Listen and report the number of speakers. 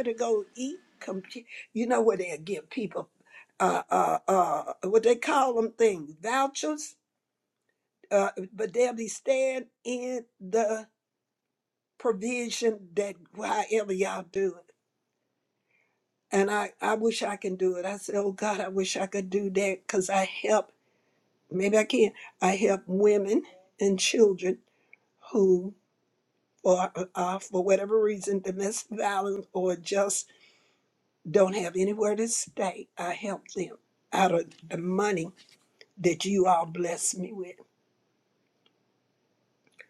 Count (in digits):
1